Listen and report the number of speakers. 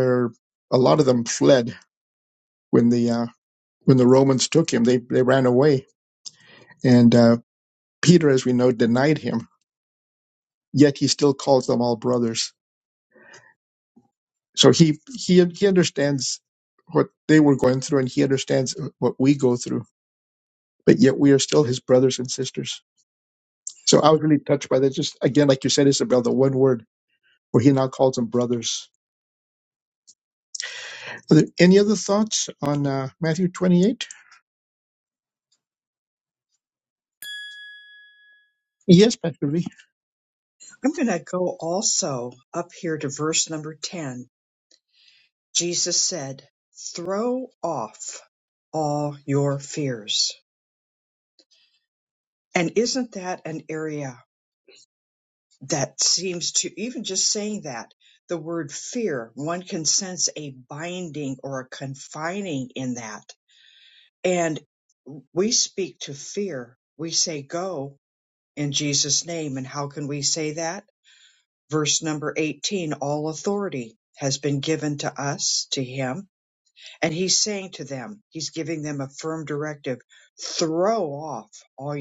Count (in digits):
2